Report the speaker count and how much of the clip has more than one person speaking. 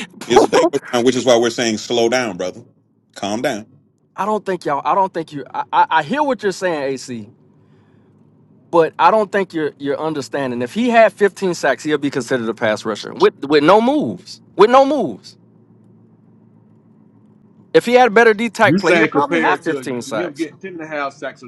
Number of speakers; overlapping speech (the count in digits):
3, about 8%